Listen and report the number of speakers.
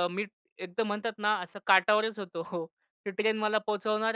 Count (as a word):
one